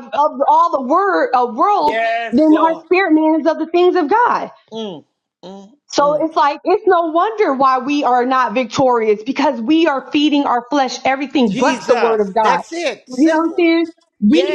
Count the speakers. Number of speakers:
2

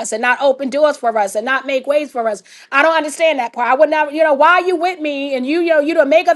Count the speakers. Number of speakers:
1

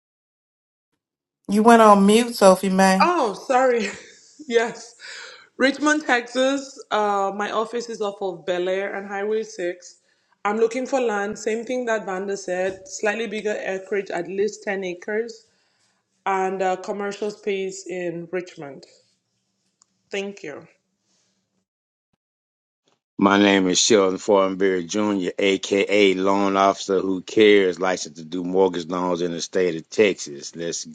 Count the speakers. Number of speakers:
3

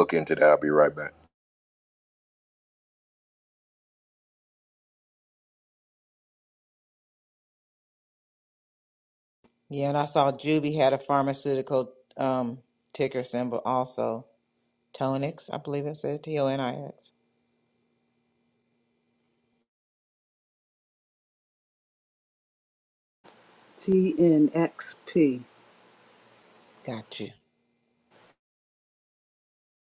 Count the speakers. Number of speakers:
3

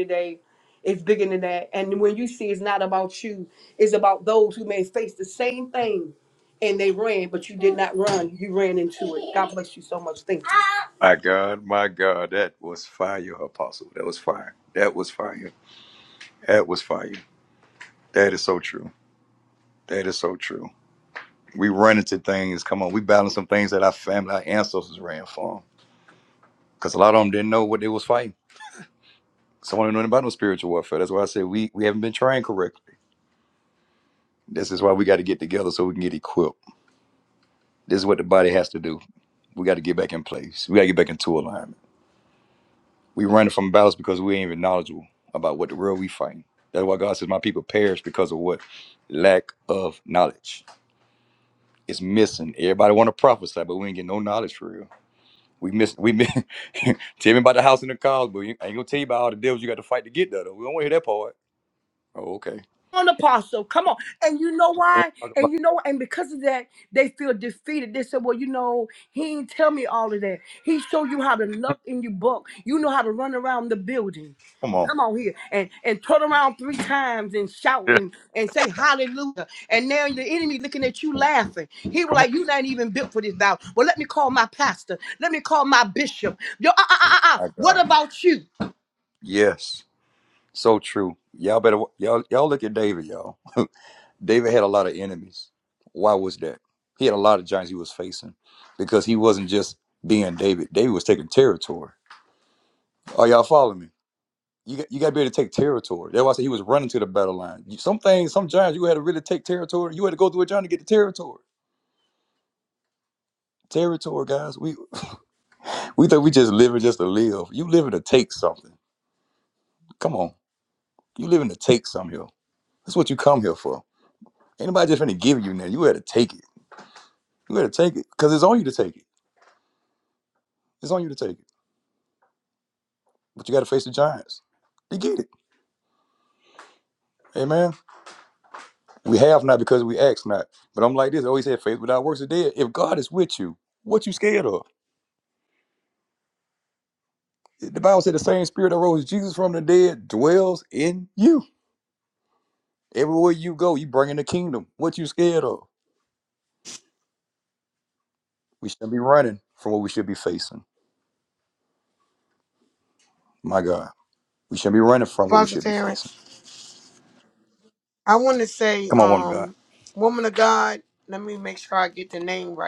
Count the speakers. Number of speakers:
3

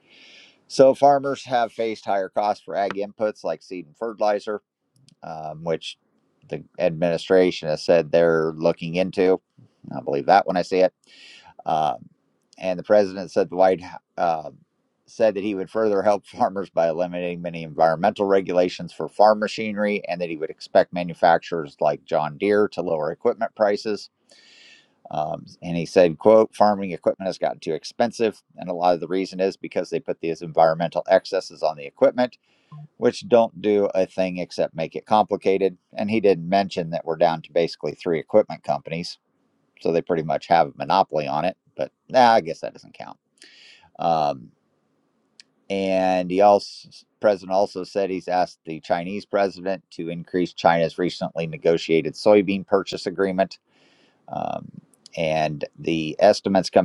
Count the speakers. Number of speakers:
1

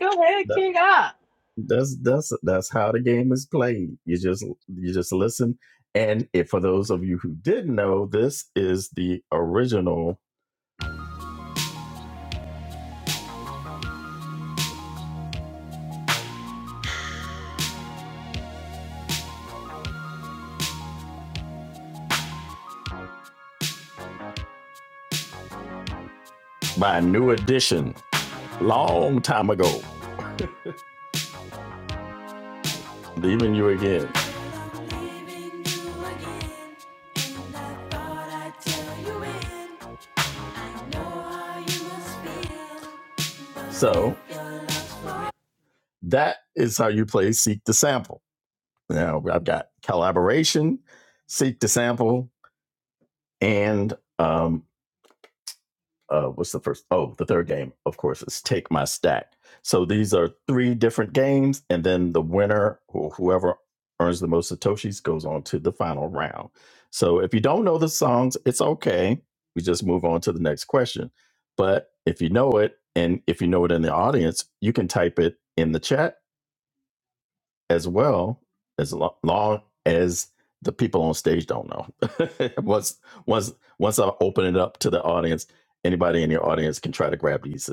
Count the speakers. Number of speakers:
2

